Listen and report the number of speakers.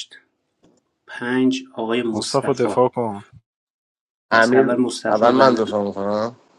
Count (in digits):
3